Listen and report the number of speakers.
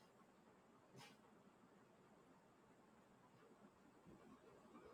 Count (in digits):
0